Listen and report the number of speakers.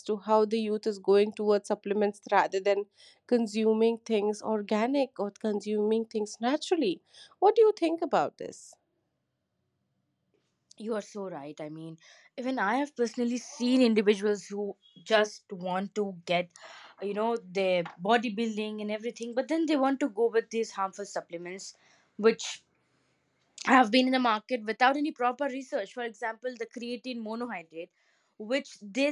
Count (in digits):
2